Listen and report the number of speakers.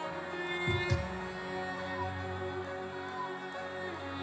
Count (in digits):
0